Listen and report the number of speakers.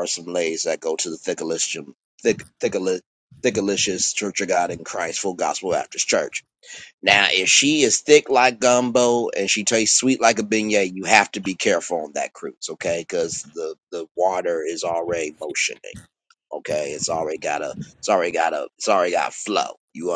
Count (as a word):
one